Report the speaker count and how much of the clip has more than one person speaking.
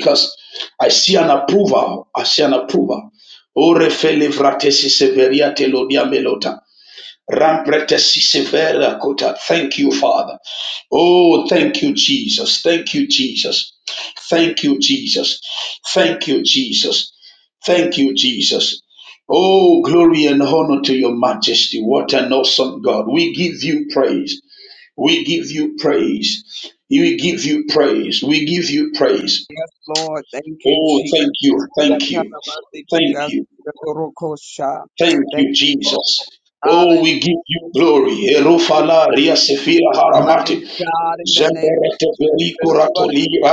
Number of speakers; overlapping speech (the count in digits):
2, about 11%